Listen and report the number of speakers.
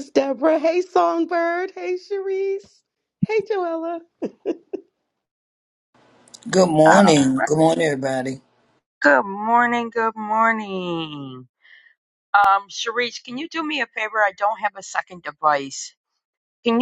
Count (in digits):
3